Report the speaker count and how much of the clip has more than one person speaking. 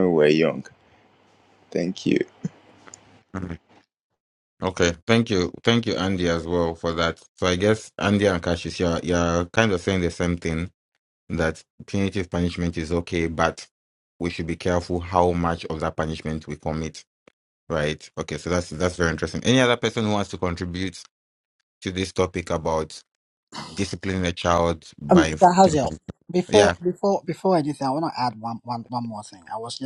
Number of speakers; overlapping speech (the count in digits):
3, about 4%